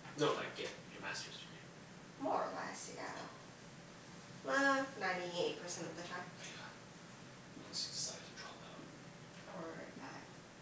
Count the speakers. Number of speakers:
two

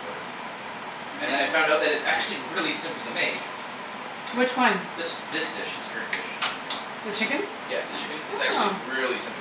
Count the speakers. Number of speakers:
two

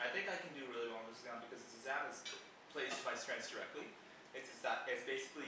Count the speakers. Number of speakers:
one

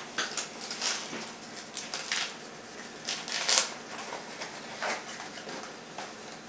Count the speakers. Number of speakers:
zero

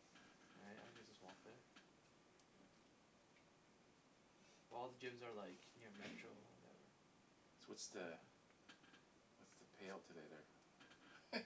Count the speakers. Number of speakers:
two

